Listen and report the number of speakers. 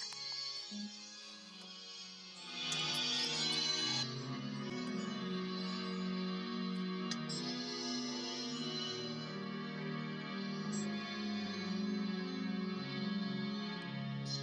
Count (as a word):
zero